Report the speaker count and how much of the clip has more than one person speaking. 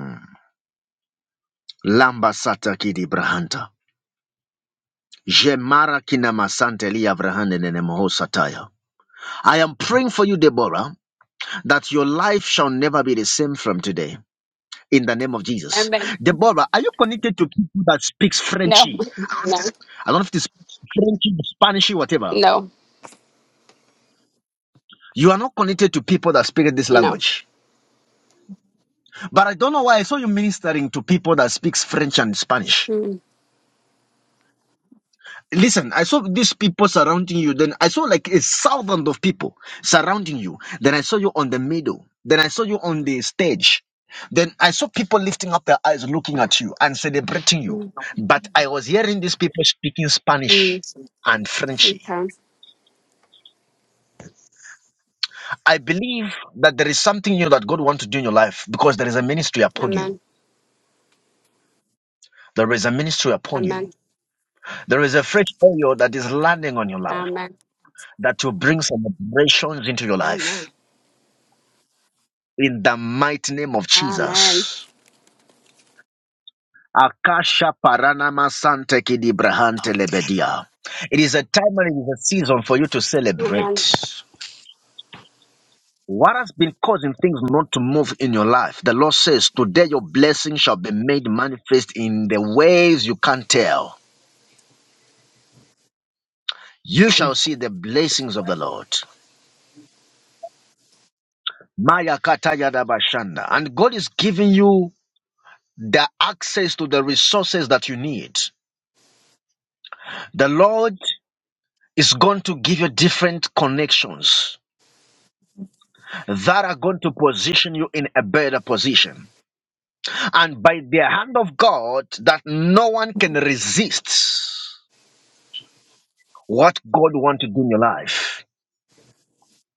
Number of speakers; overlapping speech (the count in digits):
2, about 3%